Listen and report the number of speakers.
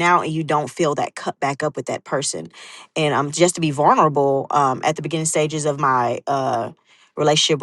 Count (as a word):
one